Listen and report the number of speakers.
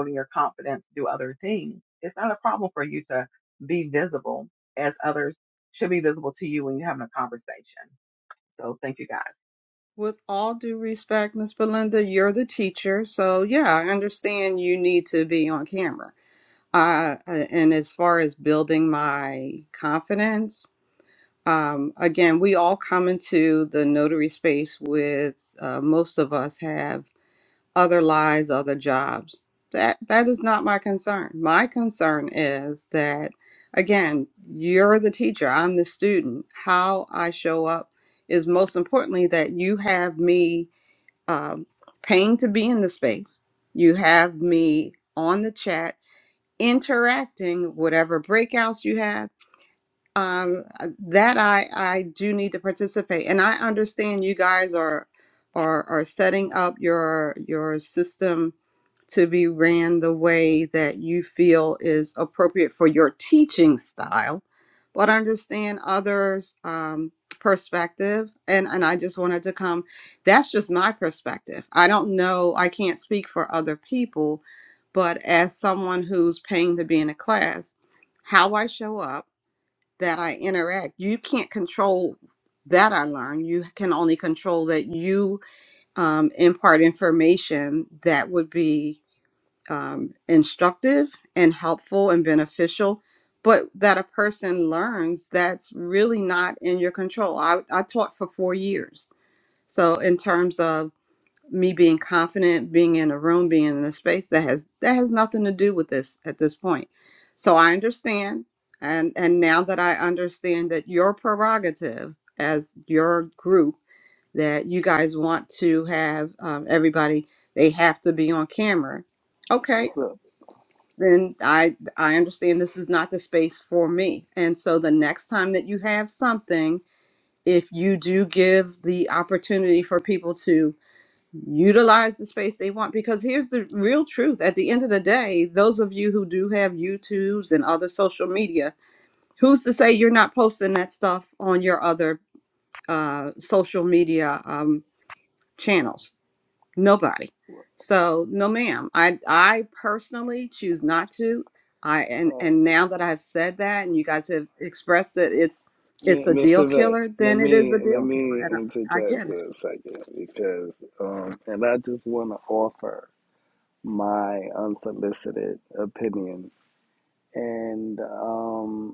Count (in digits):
3